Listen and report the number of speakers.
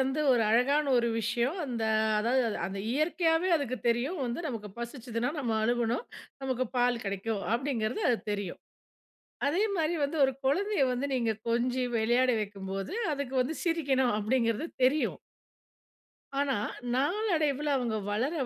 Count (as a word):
one